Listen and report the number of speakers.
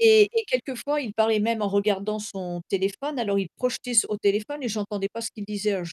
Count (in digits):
1